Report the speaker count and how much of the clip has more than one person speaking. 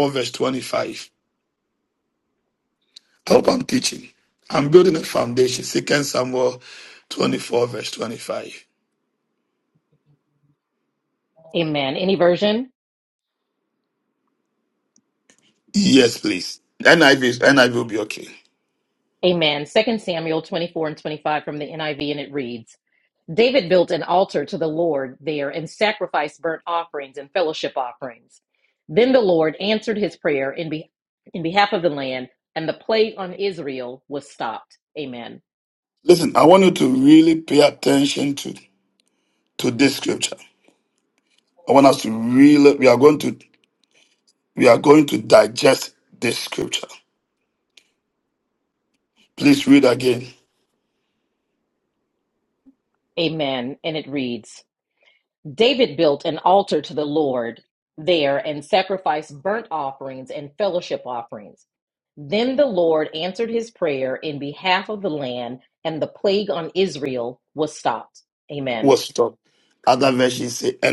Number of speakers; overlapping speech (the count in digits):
2, under 1%